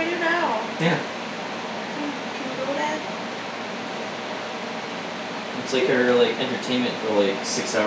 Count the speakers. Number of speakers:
2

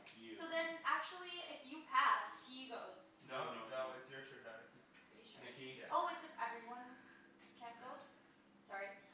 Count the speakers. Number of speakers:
3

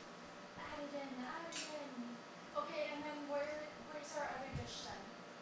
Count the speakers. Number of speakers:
1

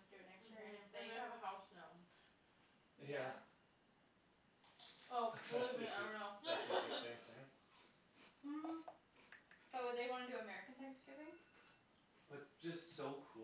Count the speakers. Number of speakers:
3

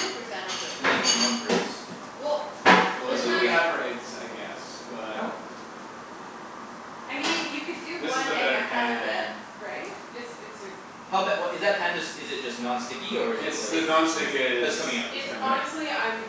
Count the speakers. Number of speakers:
4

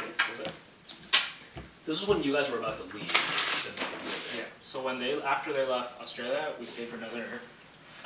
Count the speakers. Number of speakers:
2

